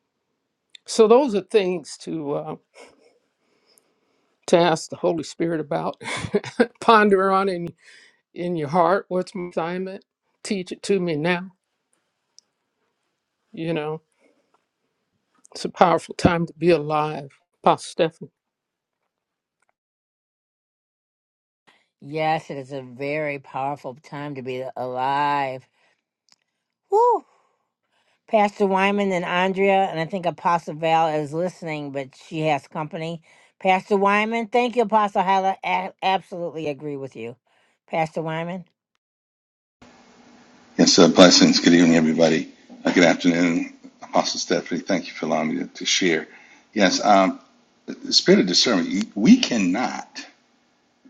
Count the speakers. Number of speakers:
three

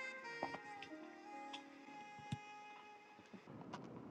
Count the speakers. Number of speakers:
zero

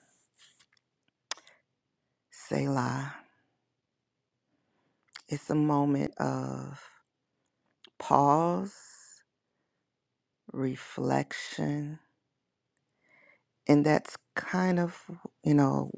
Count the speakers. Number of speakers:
one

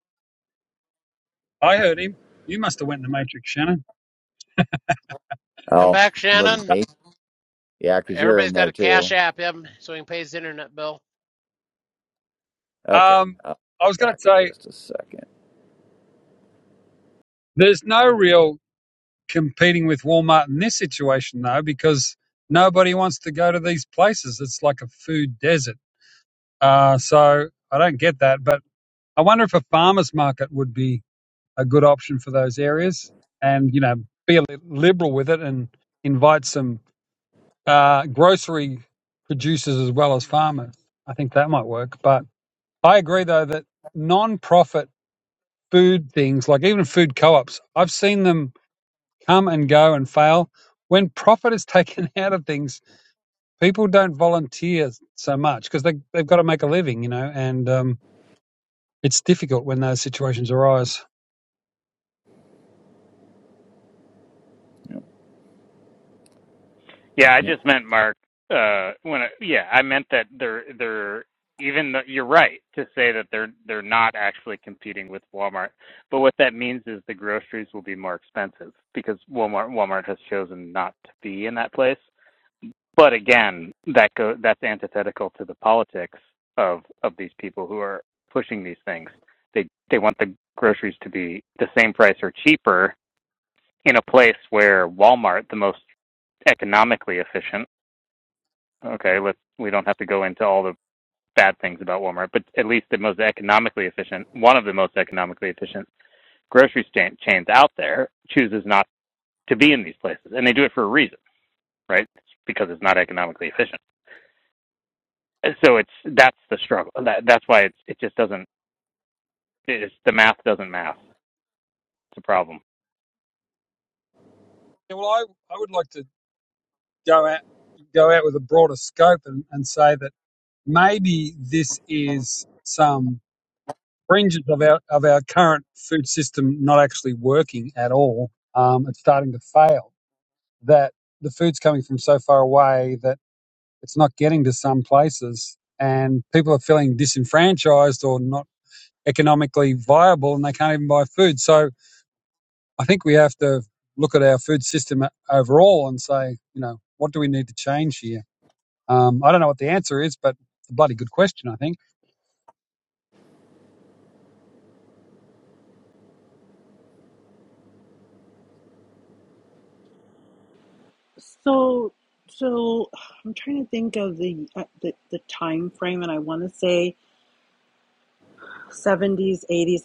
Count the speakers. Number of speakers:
five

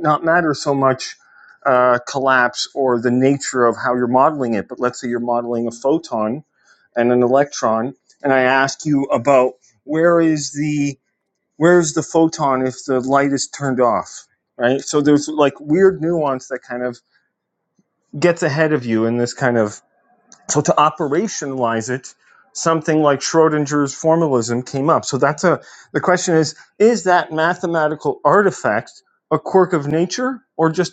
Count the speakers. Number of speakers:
one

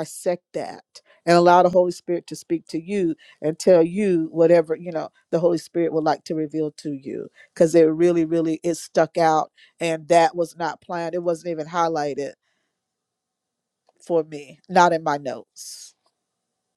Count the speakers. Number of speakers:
one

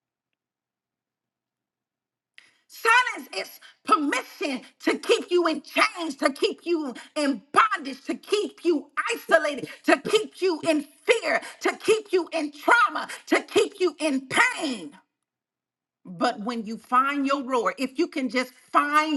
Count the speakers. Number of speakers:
one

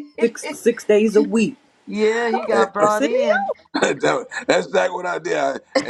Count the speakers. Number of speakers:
three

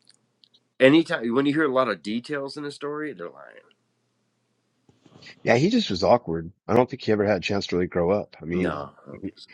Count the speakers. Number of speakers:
two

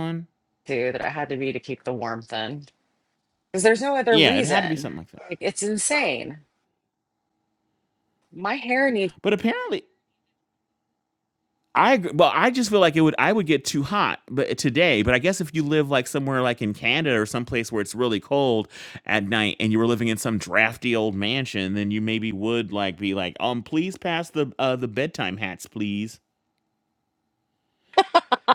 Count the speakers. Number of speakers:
two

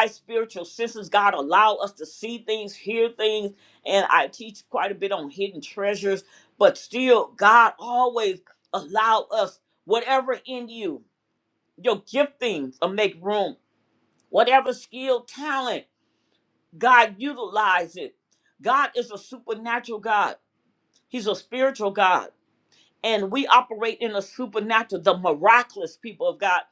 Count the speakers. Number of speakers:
one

